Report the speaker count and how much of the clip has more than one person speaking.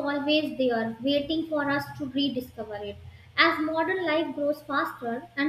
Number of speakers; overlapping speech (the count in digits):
1, no overlap